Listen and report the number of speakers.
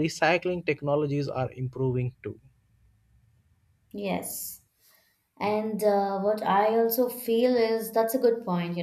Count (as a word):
two